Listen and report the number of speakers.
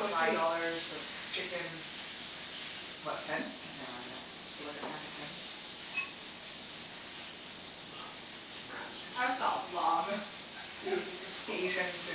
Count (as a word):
two